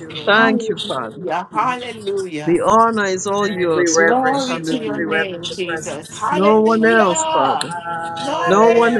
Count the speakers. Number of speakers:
three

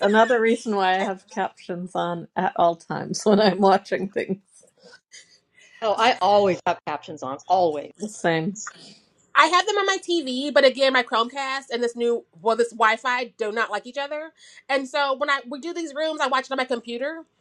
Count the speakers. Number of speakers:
three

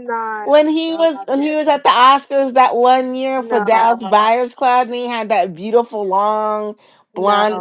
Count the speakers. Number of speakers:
two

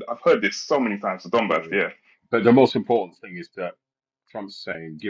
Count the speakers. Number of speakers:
two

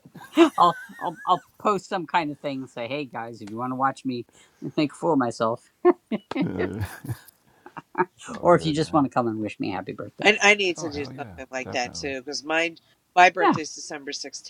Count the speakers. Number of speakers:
three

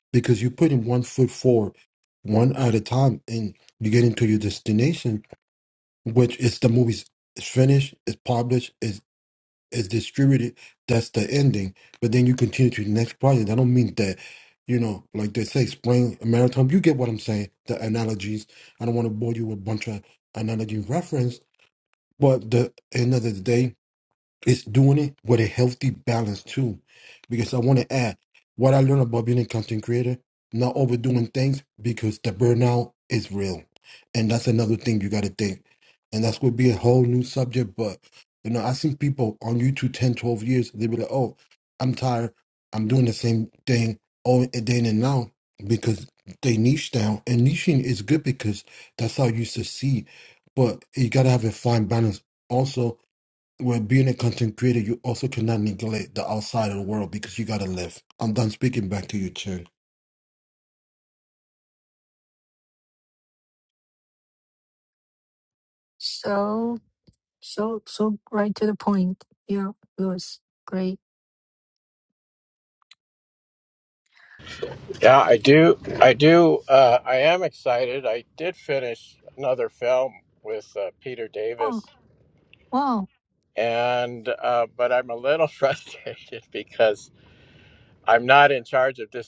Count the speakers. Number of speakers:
three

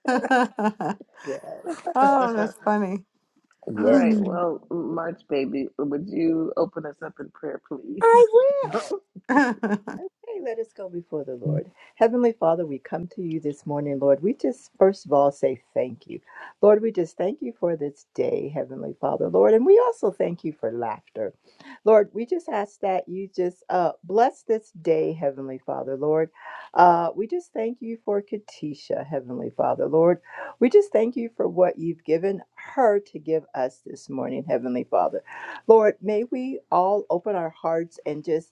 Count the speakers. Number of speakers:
three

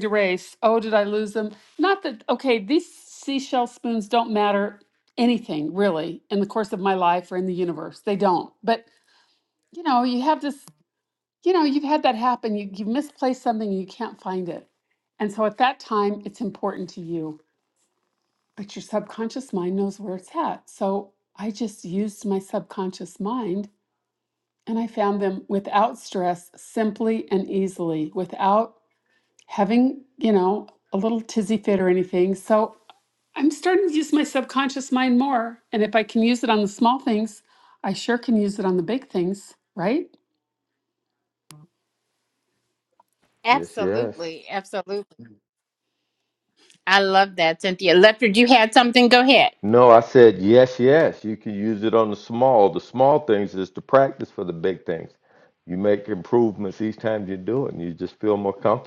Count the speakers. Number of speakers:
three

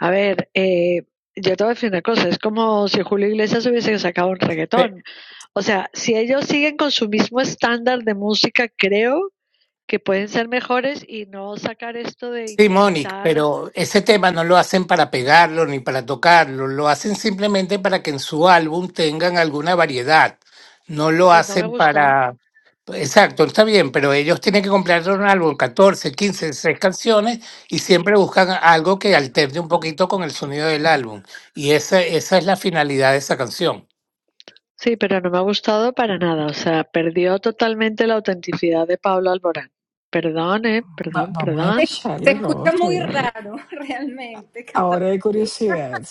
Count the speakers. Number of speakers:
four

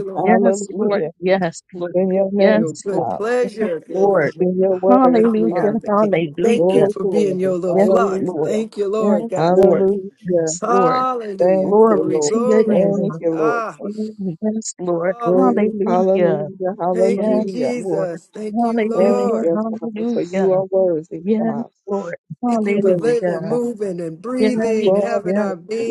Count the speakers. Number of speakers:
three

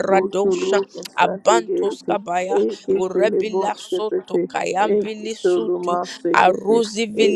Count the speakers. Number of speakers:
two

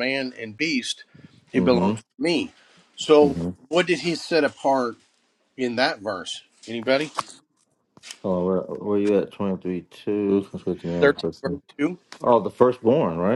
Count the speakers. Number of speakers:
two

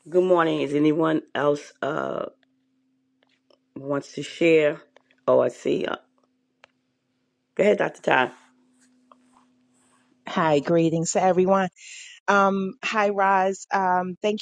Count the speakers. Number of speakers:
two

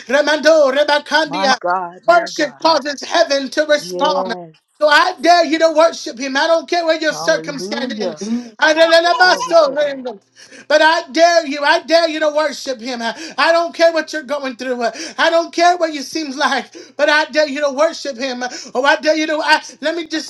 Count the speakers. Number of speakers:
two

